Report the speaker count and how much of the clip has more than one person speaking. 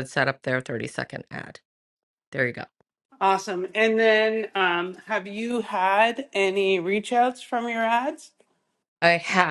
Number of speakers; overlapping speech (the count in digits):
2, no overlap